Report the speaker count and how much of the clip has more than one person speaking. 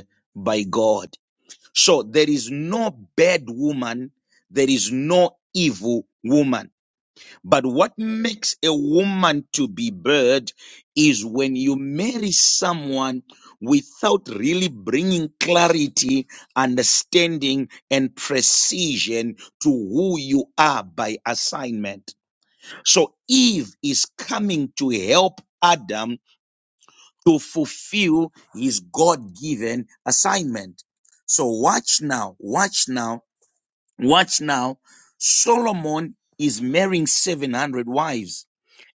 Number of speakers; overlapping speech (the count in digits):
1, no overlap